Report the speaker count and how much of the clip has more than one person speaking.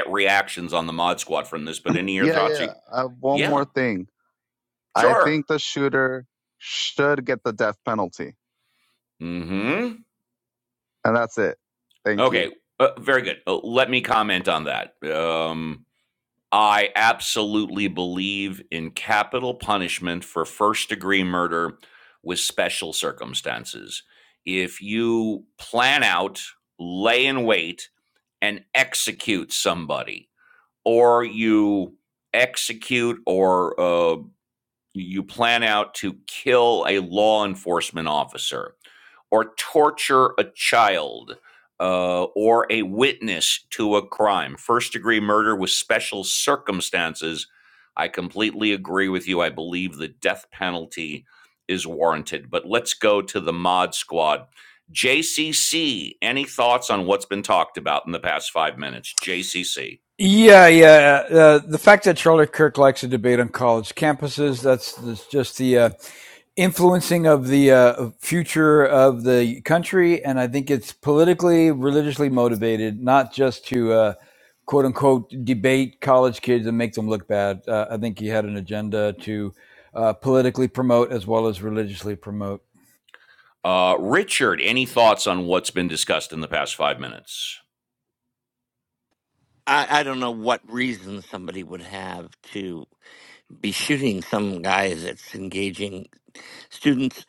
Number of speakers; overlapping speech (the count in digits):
4, about 1%